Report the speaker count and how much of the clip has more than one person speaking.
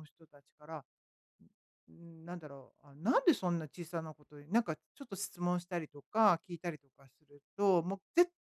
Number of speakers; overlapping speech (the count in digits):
1, no overlap